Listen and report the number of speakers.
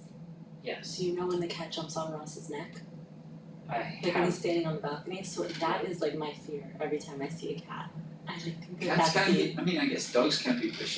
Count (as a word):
three